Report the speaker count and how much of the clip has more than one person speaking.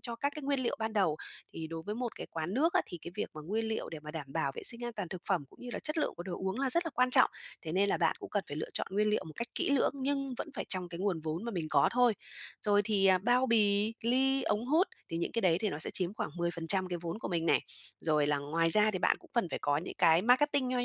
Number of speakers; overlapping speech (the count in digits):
1, no overlap